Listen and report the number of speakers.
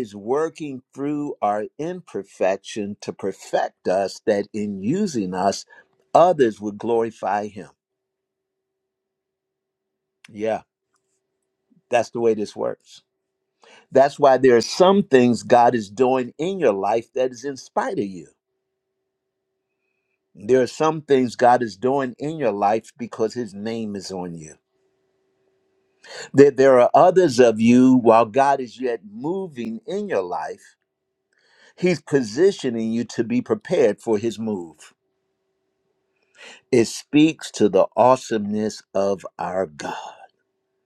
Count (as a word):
one